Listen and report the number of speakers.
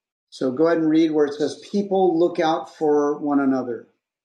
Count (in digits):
1